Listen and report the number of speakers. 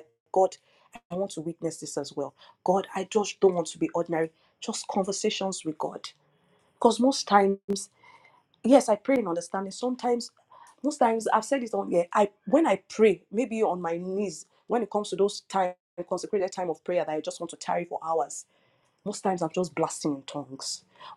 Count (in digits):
1